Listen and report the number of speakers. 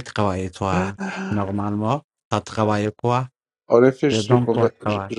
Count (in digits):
2